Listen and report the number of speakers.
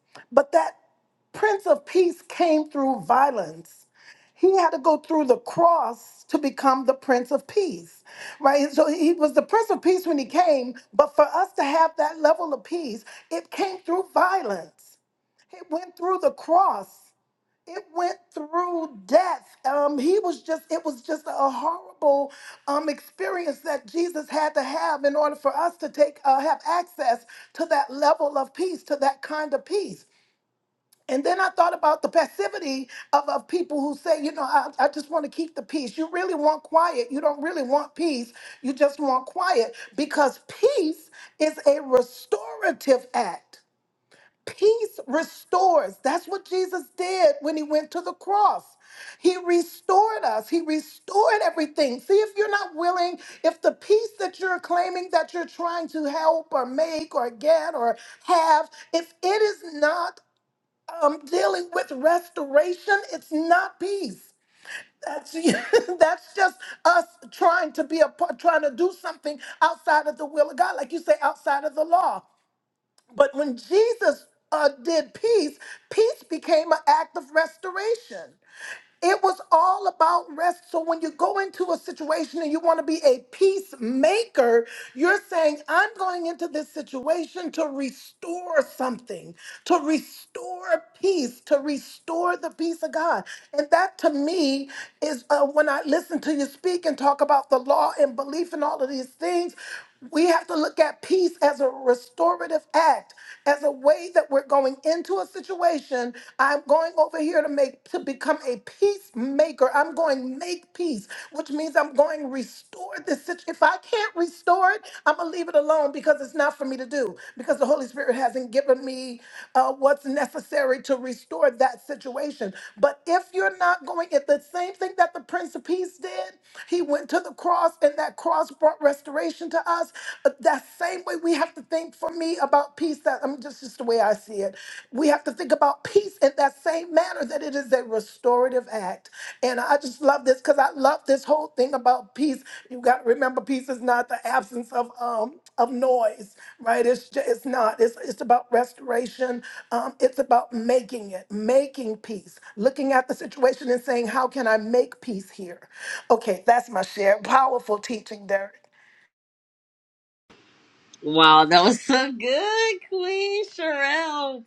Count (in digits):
2